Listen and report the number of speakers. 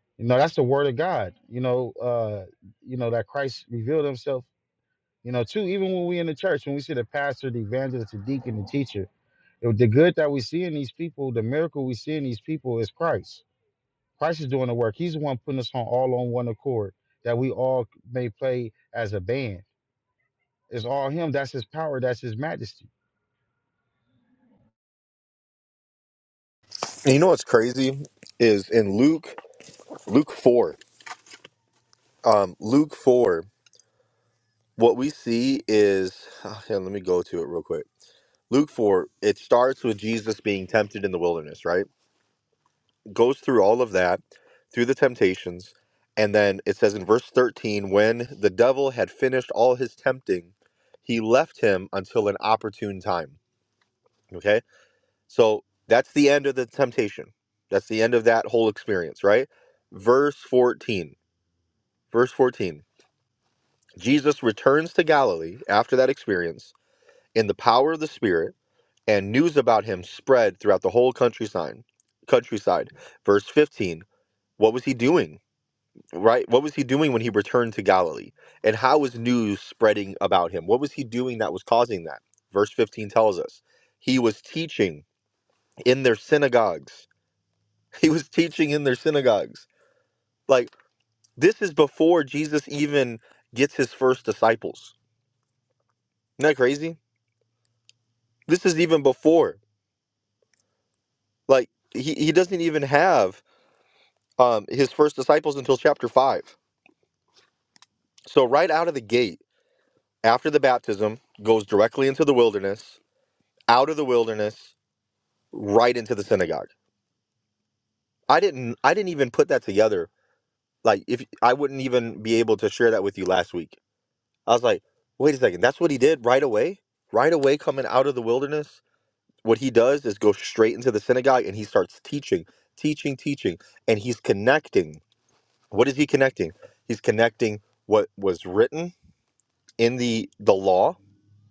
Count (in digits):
2